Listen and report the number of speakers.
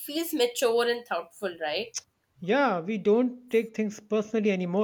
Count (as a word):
two